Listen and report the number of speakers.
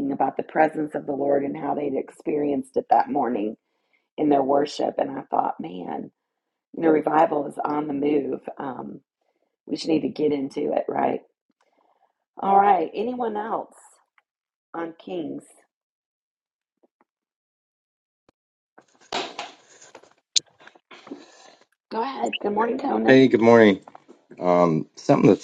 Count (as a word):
two